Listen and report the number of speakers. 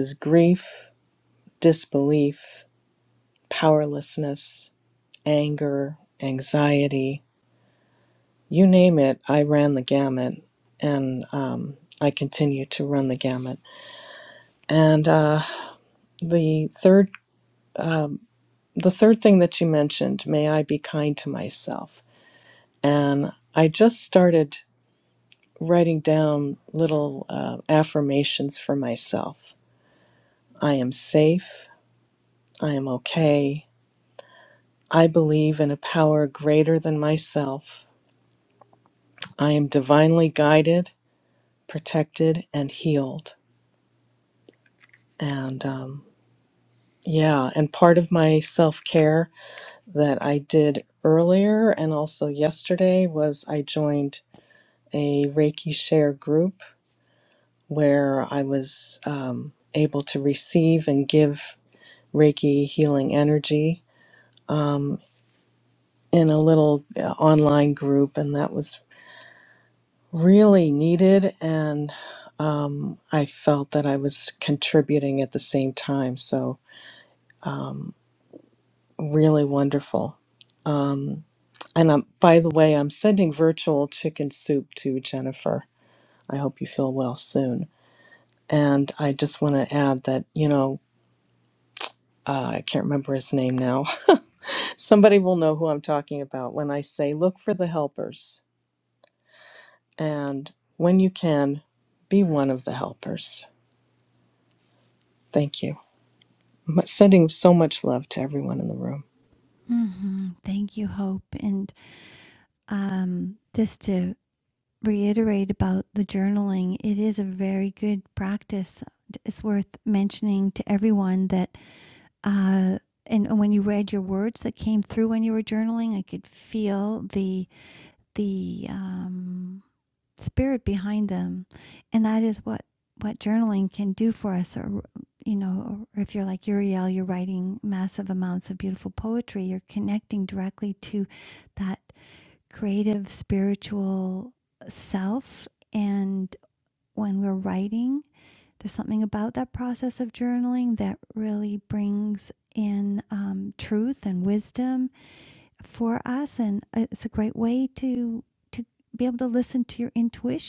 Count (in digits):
2